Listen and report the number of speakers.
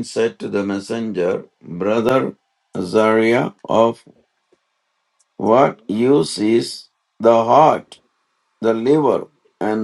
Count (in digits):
1